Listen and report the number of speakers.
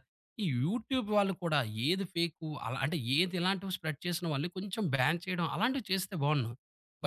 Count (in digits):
1